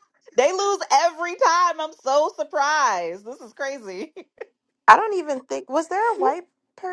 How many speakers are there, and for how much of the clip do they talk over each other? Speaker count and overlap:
2, no overlap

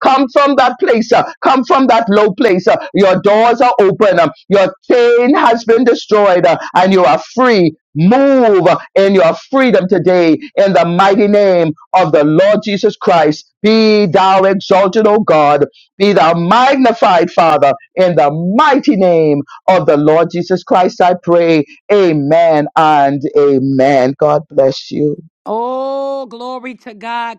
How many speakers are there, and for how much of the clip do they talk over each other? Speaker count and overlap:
2, no overlap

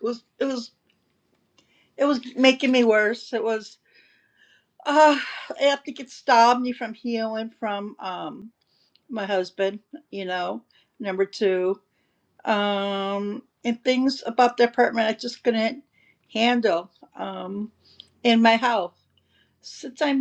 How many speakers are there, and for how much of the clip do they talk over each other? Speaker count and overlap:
1, no overlap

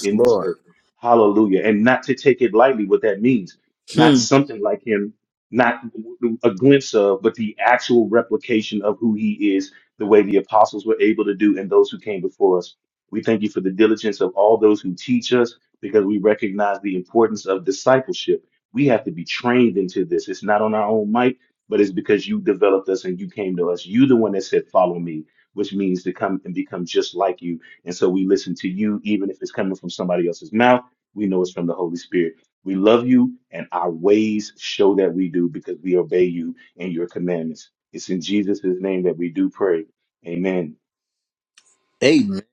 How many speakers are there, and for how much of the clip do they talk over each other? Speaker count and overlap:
2, about 2%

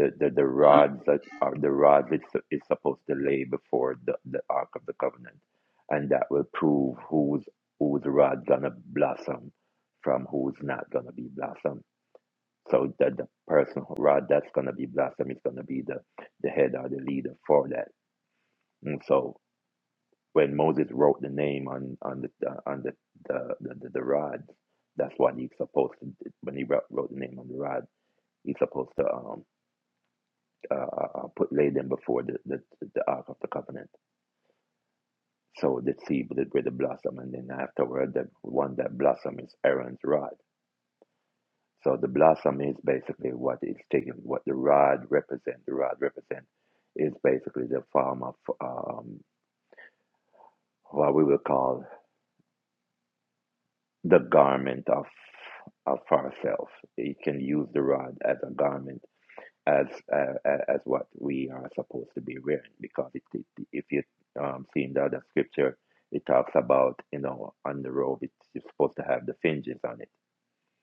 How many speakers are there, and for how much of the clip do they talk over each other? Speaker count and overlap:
1, no overlap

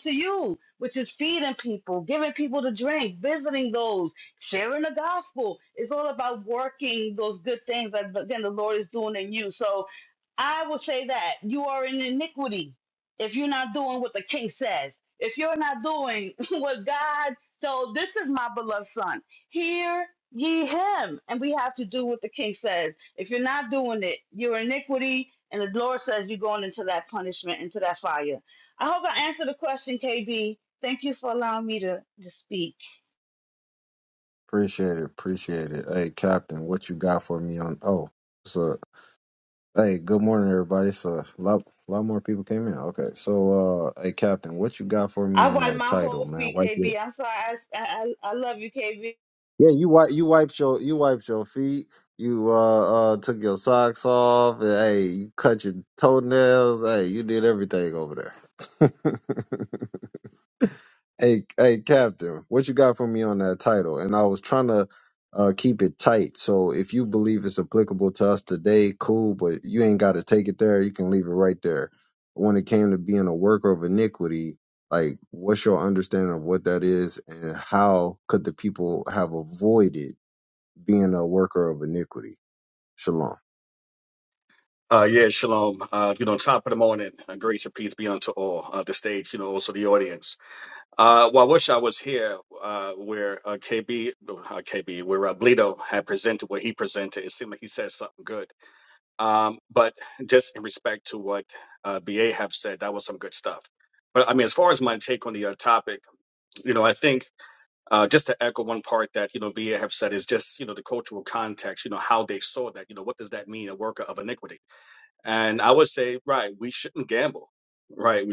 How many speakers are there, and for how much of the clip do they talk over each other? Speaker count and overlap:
3, about 1%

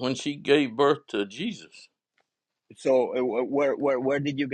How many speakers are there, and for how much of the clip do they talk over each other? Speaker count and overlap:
2, no overlap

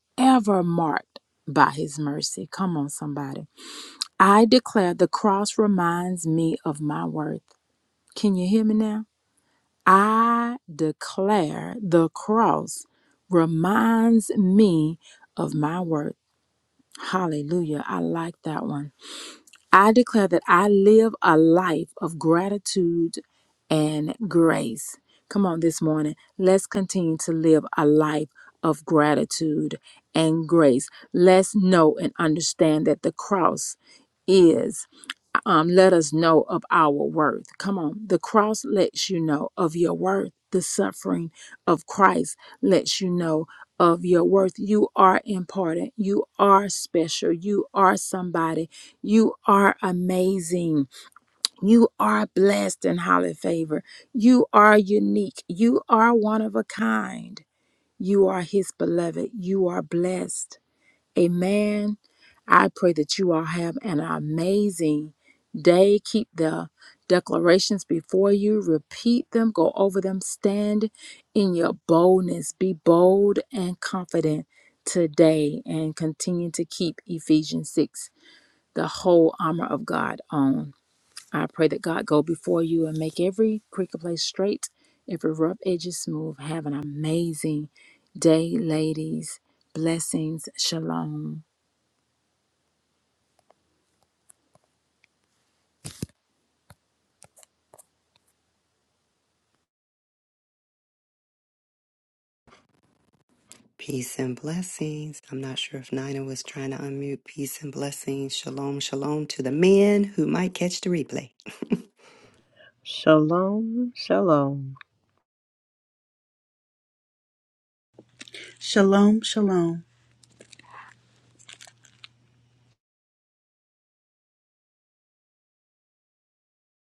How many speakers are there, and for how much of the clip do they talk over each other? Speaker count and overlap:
4, no overlap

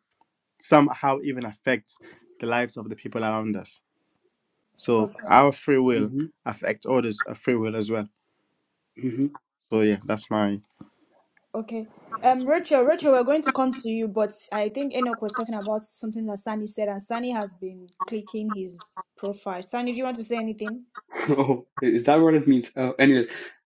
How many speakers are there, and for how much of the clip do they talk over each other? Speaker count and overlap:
3, about 2%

